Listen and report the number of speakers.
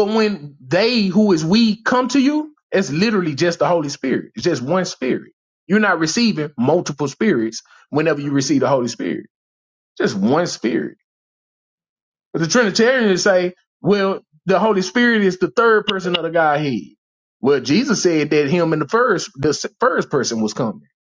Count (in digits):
1